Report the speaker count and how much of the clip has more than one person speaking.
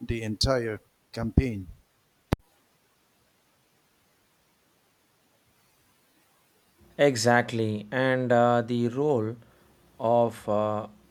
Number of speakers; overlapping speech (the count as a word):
two, no overlap